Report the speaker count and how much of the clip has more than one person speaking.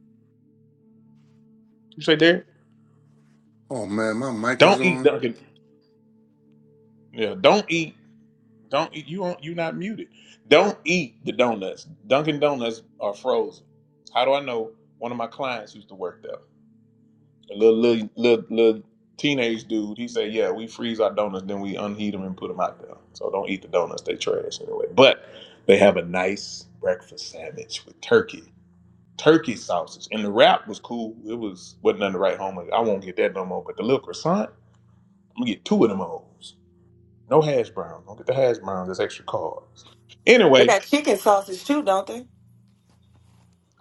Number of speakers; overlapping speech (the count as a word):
three, about 2%